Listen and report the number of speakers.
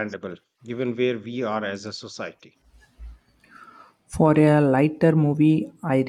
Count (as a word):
two